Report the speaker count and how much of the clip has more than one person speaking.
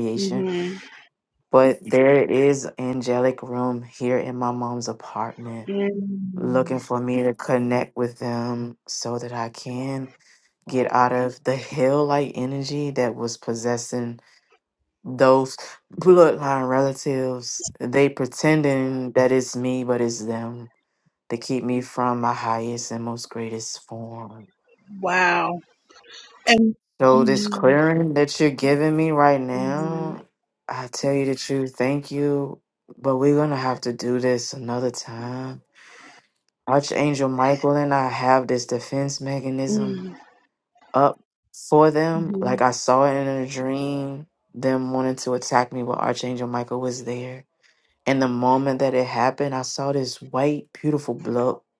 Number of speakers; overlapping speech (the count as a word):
two, about 1%